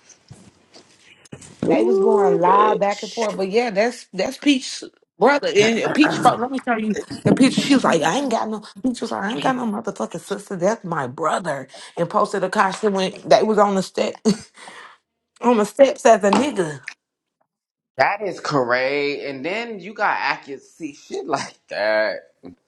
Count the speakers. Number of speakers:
2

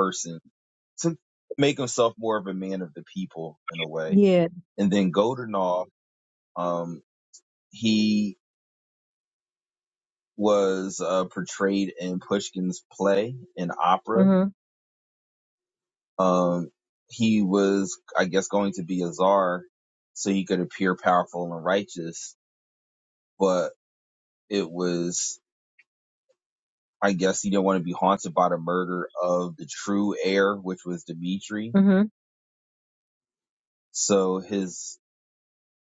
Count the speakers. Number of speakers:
2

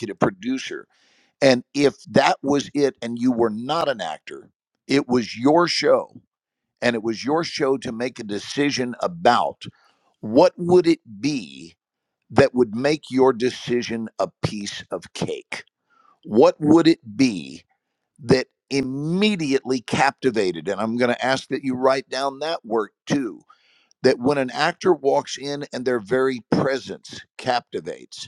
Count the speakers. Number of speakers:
1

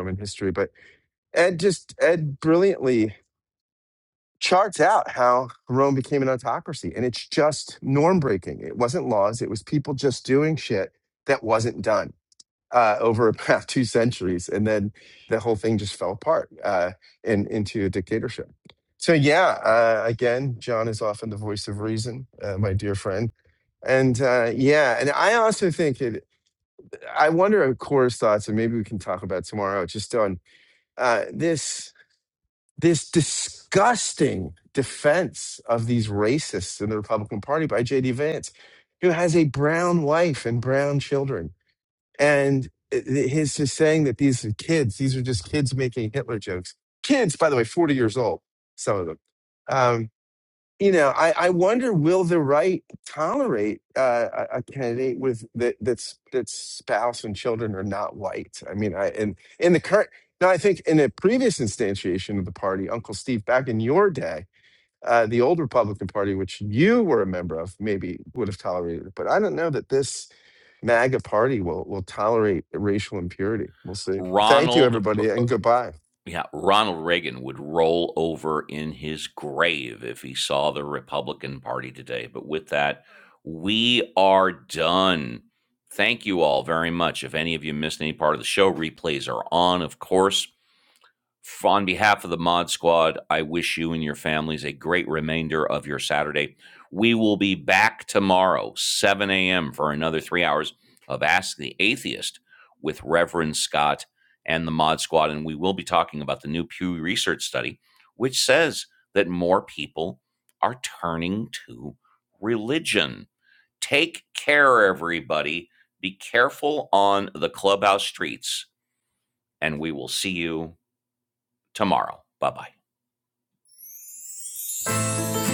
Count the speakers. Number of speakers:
2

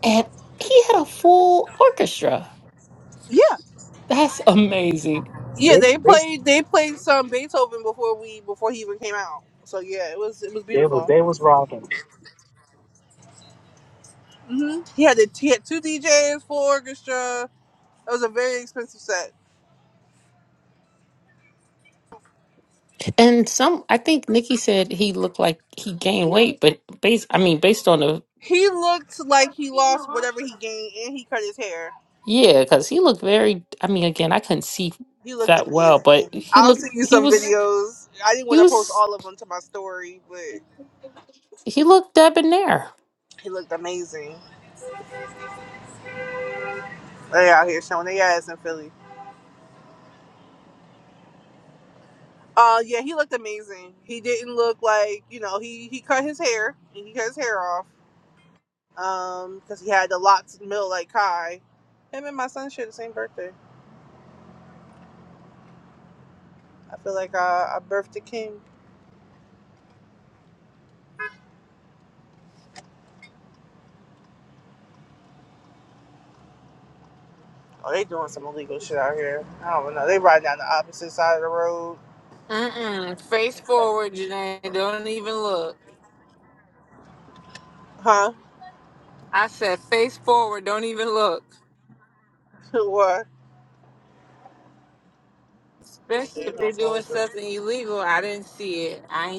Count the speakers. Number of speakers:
4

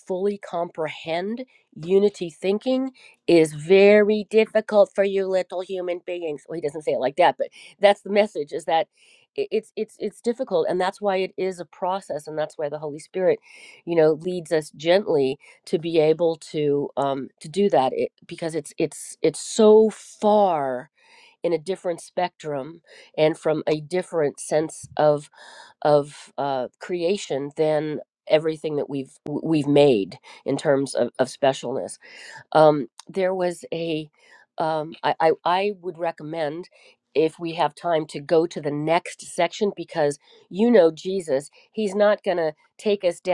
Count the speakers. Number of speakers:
1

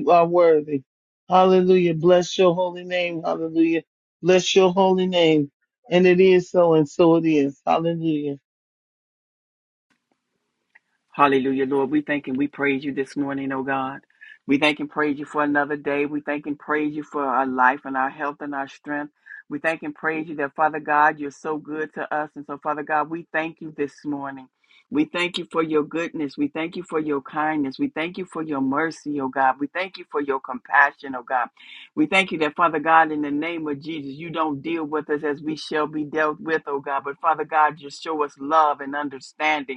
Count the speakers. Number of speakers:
2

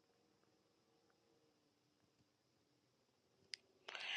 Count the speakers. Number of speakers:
0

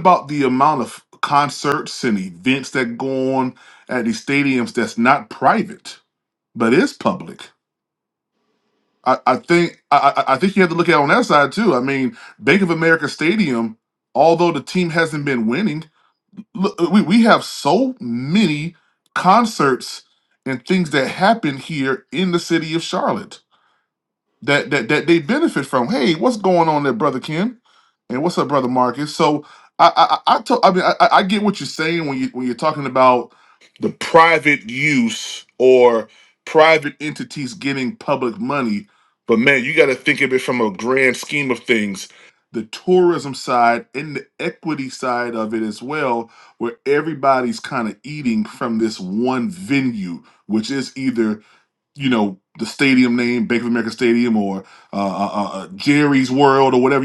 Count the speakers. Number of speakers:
1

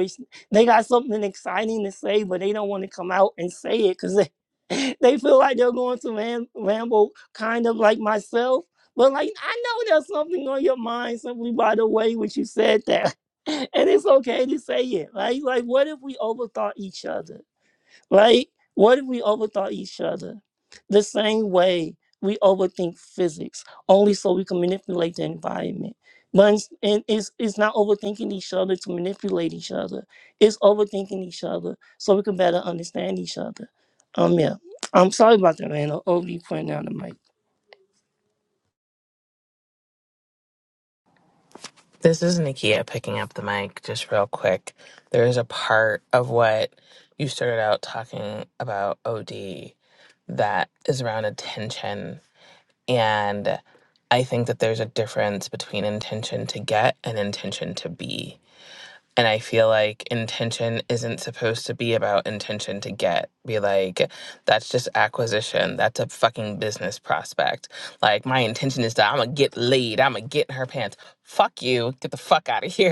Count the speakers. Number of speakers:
2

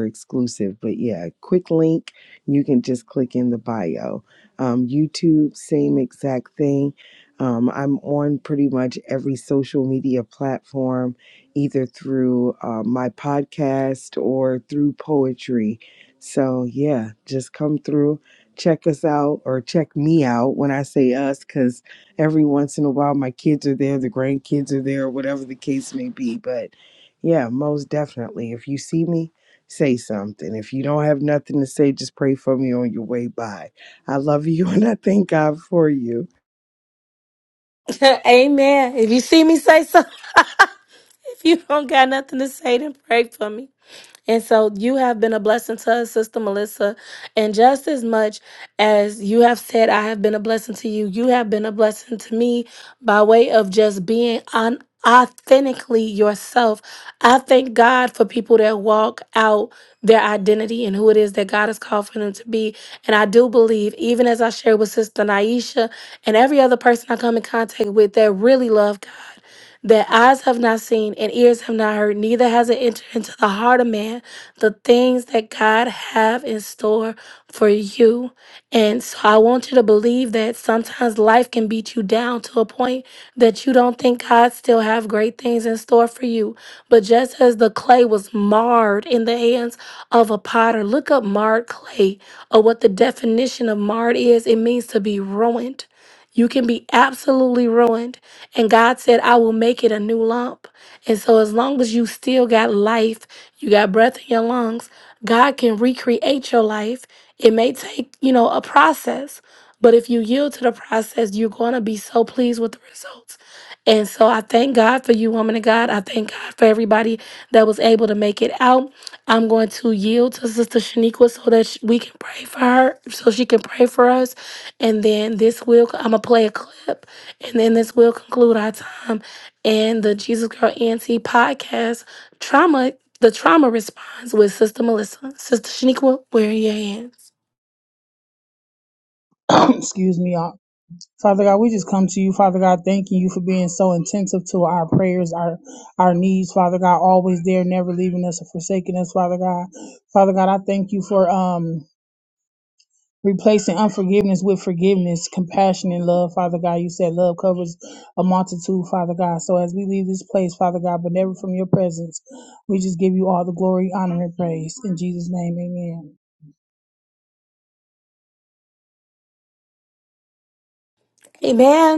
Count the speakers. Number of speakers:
3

